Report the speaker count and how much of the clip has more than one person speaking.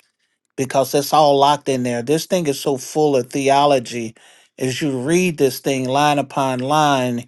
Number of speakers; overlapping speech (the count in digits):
1, no overlap